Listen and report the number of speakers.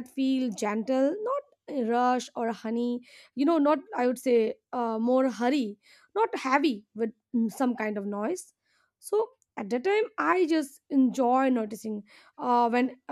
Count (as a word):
one